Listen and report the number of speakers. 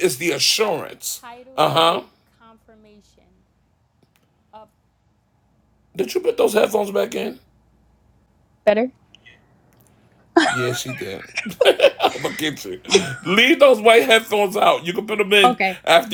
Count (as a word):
two